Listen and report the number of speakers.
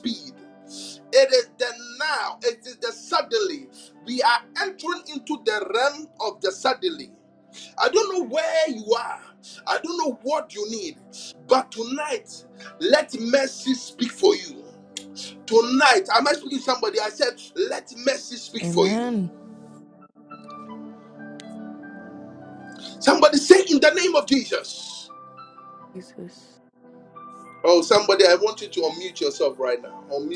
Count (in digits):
2